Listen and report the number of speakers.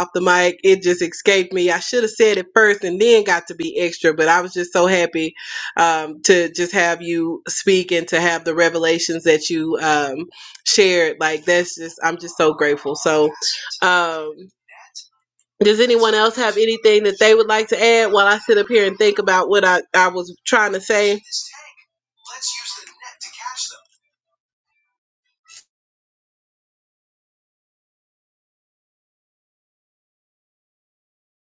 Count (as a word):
one